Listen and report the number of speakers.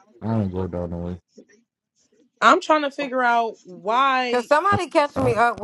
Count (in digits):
3